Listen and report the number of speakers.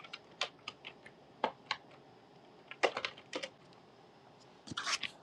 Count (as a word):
zero